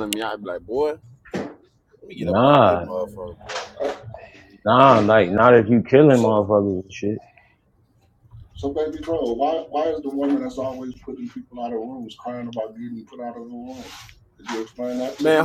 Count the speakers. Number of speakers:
three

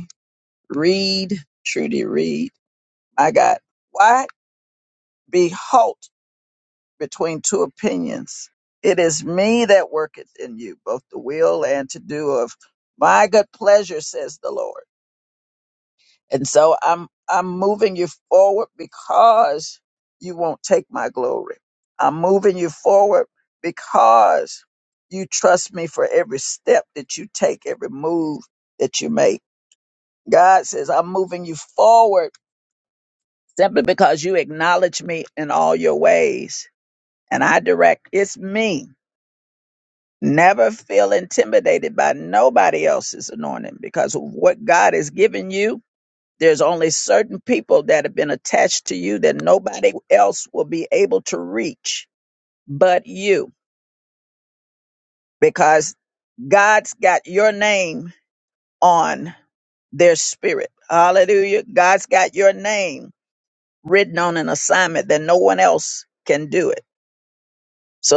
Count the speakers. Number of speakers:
one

